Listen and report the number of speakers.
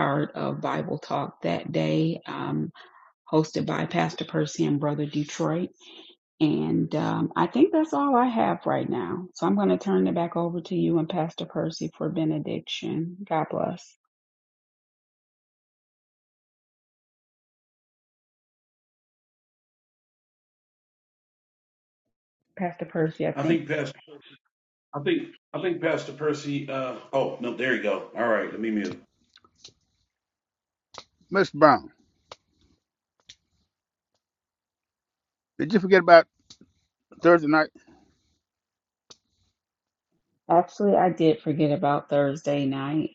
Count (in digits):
3